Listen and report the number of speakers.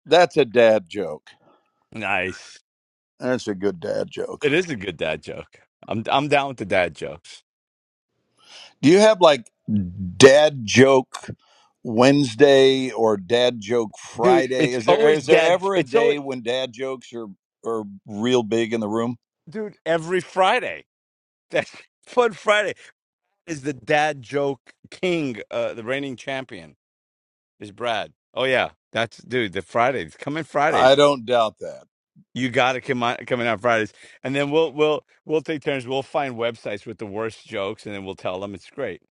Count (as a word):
two